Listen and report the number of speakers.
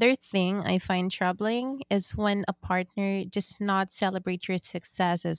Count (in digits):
1